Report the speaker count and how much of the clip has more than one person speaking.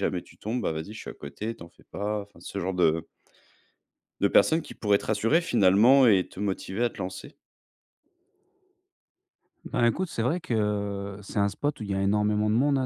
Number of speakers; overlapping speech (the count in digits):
2, no overlap